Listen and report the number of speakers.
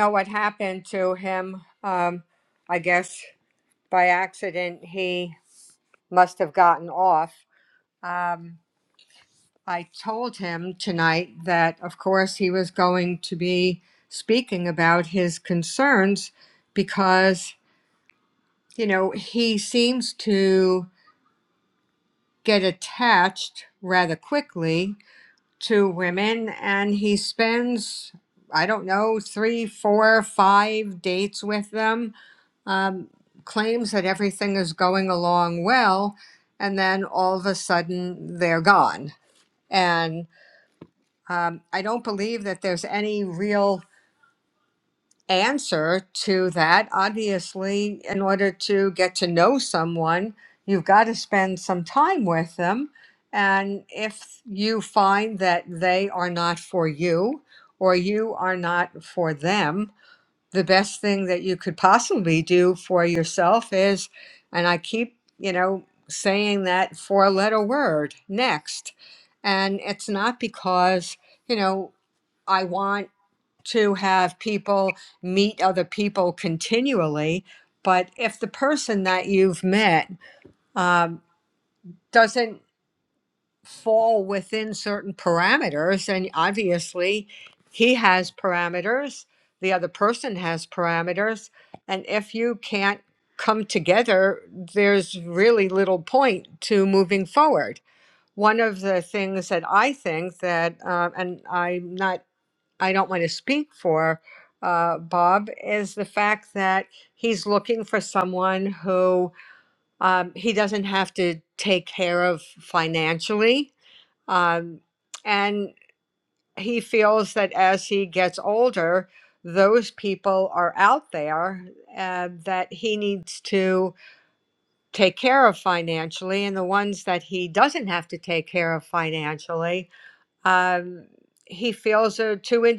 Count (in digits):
1